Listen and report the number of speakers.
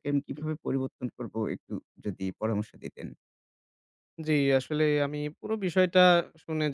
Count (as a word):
two